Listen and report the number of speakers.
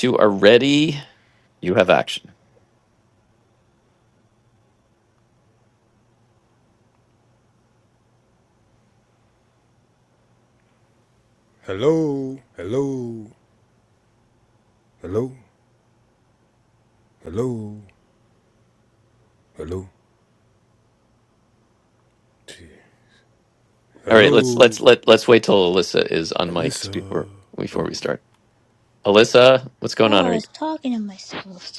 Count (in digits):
3